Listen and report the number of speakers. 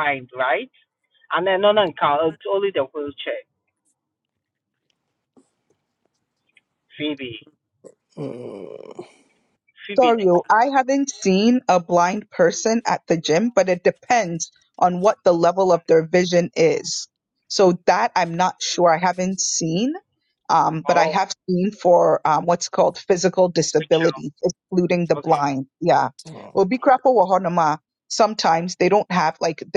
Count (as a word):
three